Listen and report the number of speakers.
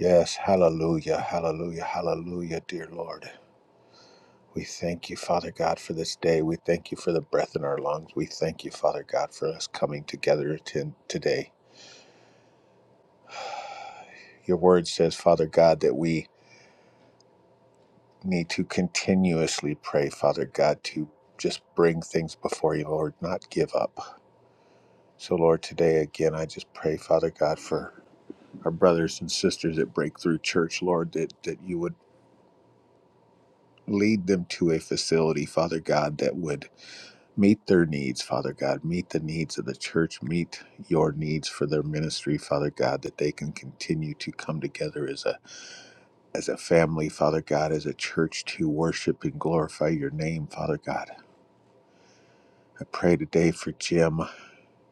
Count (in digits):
1